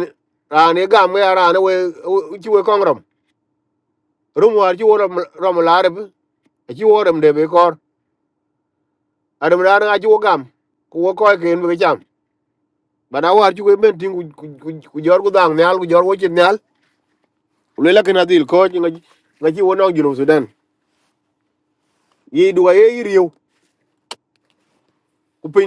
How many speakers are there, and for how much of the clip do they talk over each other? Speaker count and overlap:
1, no overlap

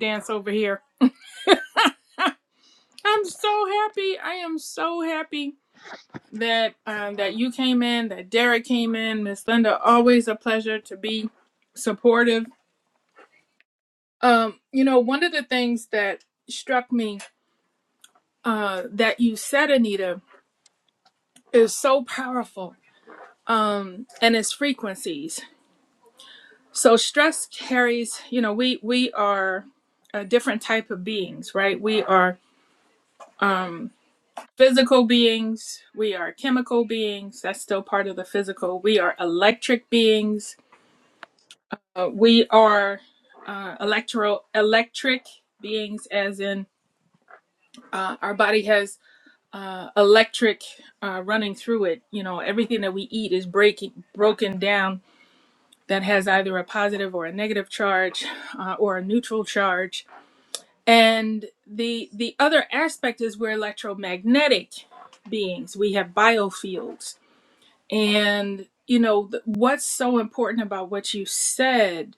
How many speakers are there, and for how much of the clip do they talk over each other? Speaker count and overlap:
1, no overlap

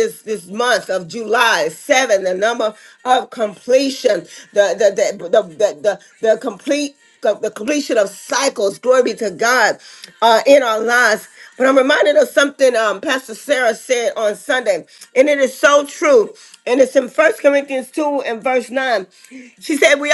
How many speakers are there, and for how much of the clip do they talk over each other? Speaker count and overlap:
1, no overlap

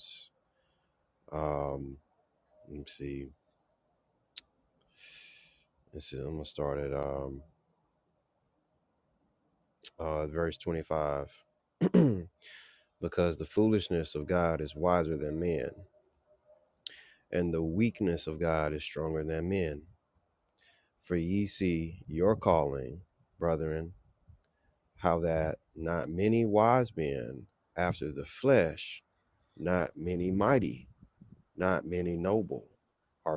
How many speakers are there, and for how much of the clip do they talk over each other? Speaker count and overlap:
1, no overlap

